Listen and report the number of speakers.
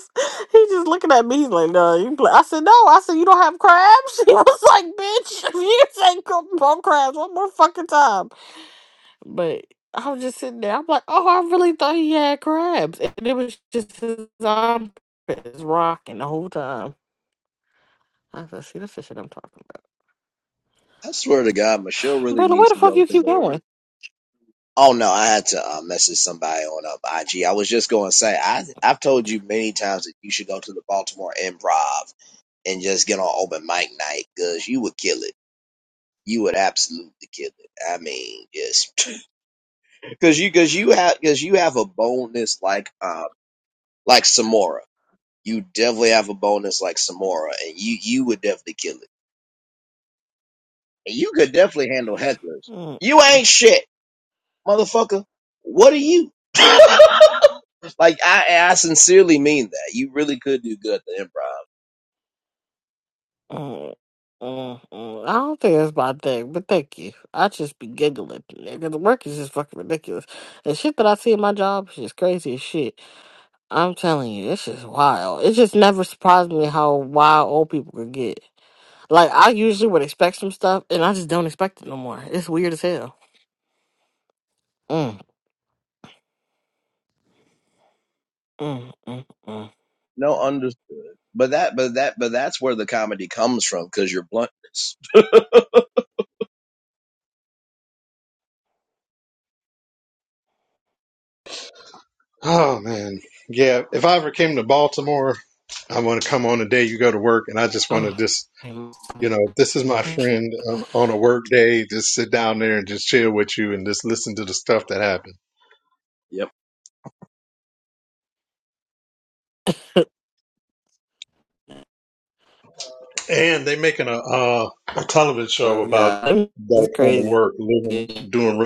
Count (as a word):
three